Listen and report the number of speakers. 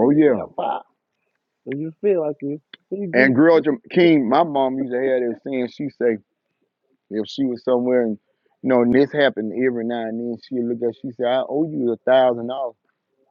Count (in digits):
2